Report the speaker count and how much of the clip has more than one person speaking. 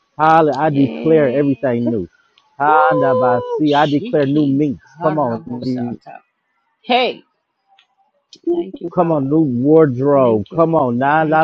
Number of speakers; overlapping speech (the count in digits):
2, about 47%